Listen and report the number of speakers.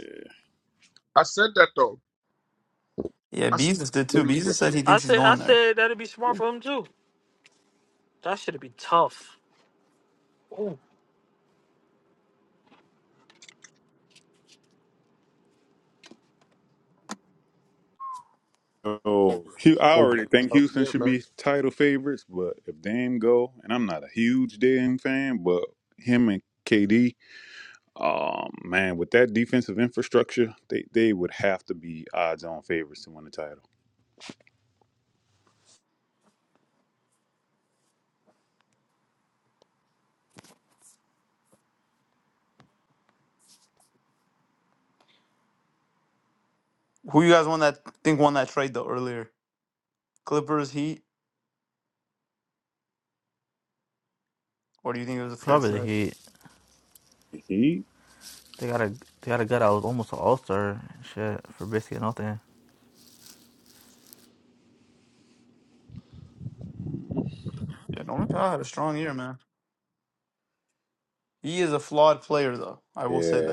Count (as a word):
five